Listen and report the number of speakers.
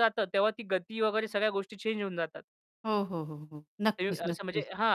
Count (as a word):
two